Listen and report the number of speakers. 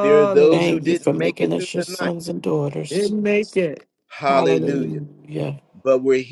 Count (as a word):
three